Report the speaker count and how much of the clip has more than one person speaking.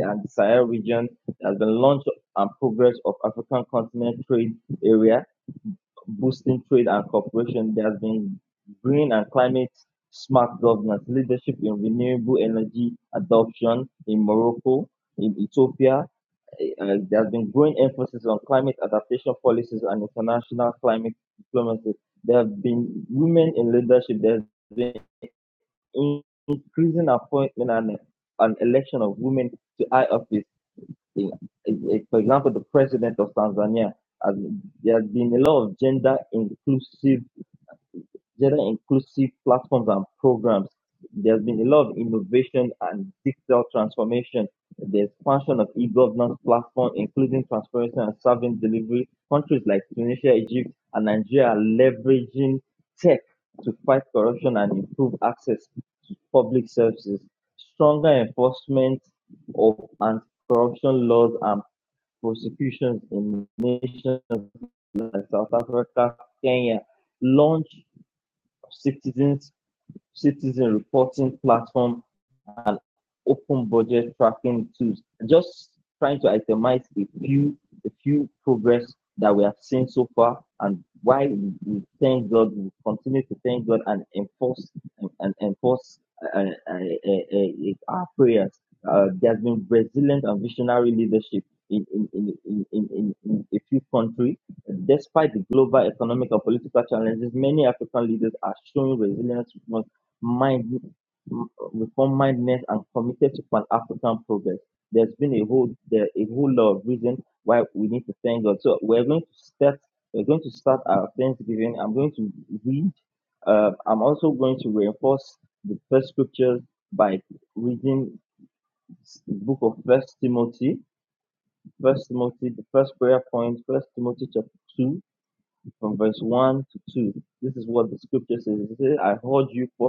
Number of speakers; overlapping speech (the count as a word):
one, no overlap